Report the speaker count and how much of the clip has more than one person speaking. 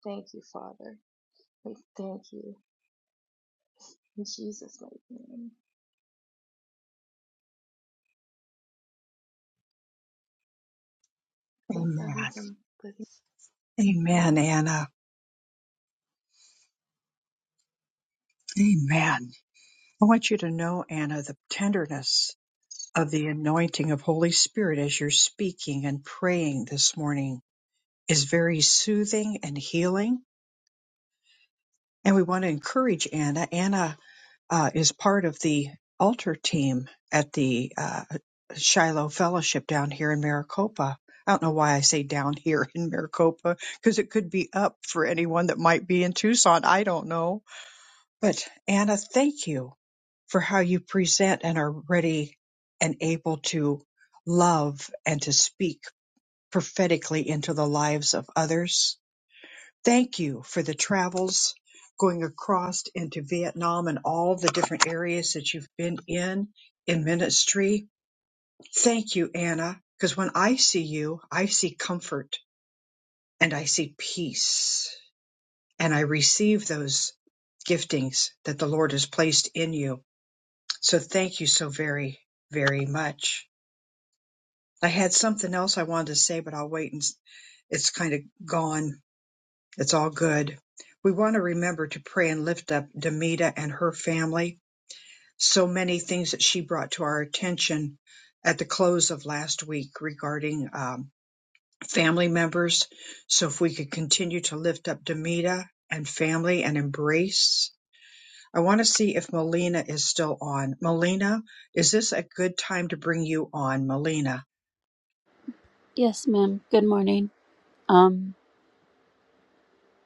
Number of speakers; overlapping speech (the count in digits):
3, about 1%